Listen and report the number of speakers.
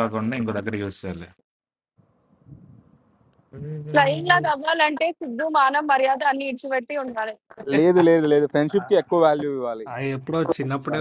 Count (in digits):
4